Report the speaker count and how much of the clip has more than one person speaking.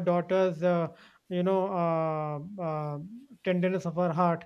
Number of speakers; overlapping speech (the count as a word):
one, no overlap